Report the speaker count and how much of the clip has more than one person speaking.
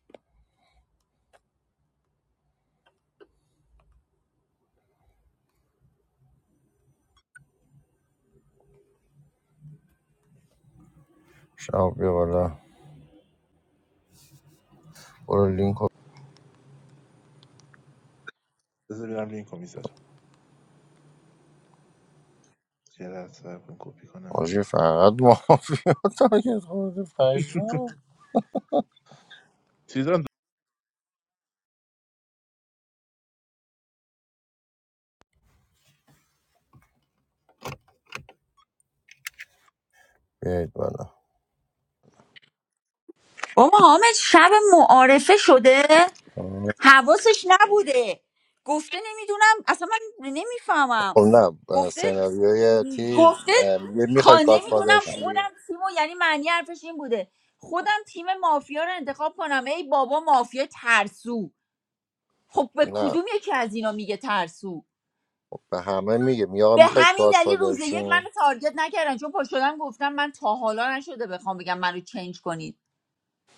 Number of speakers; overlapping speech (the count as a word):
three, about 5%